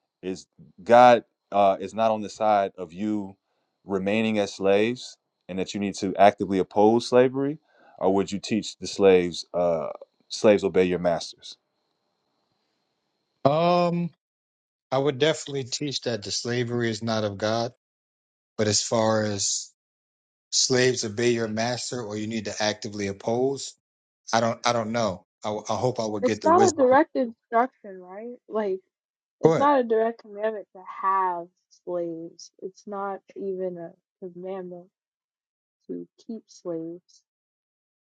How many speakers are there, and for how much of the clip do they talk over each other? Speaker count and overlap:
3, about 2%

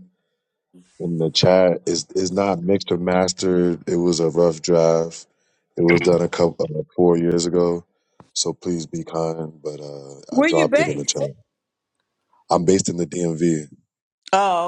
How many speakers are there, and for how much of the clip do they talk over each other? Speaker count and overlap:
2, about 6%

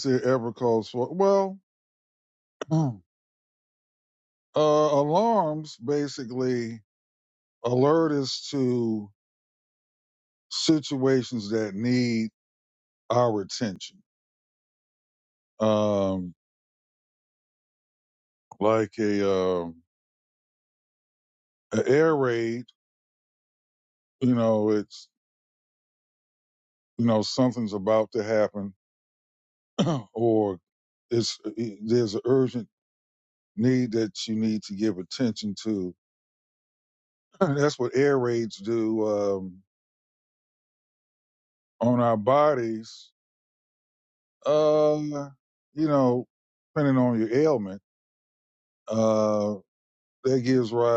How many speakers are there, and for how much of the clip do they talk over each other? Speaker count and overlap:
1, no overlap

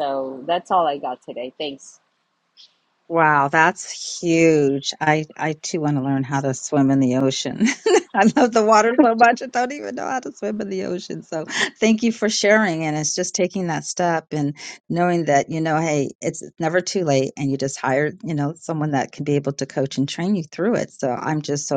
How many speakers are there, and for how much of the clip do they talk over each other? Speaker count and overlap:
2, no overlap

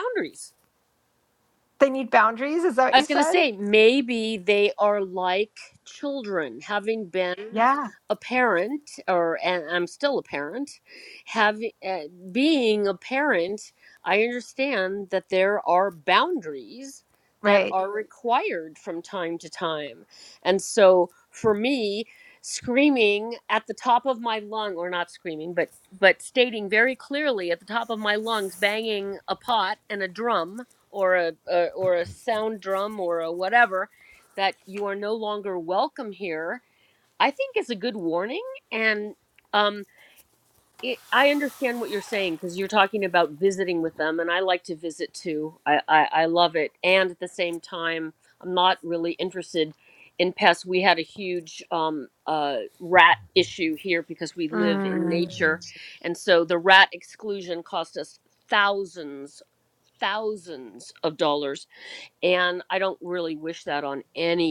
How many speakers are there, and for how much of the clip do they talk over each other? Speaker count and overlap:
2, about 3%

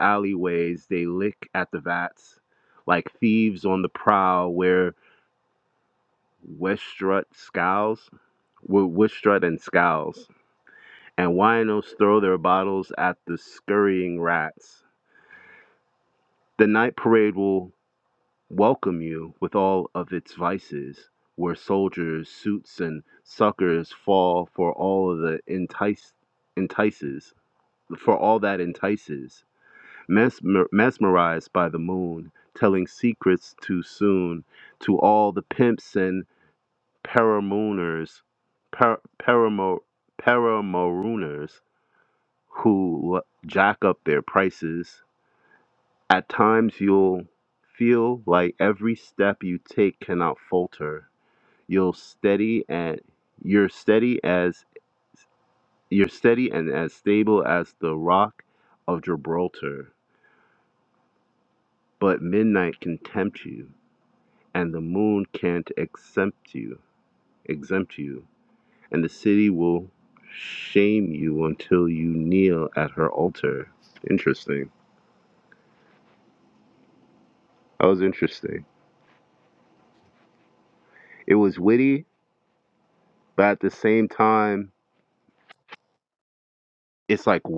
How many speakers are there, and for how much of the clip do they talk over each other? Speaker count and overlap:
1, no overlap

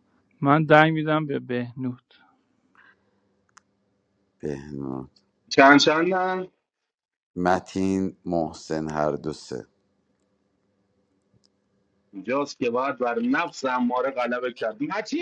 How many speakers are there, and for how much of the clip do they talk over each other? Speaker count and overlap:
3, no overlap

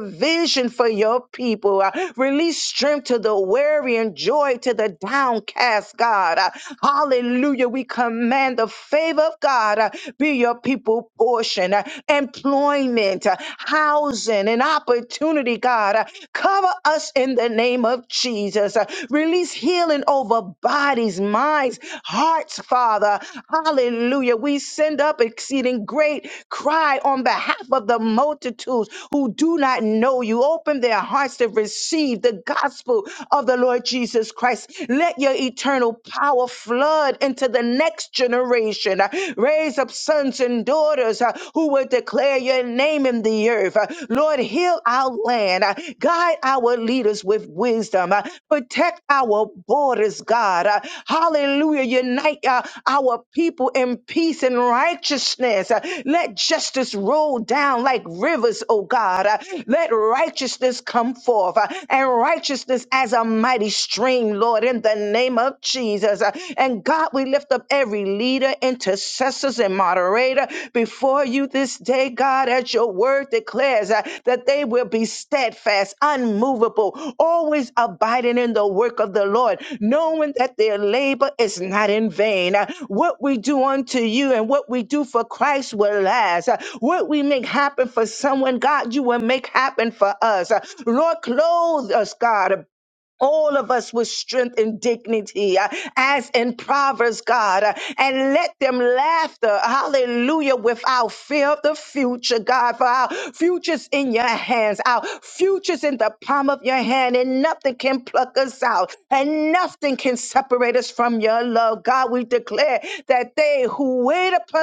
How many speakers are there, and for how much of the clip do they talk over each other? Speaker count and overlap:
1, no overlap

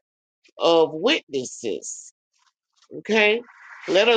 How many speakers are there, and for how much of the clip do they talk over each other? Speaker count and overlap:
1, no overlap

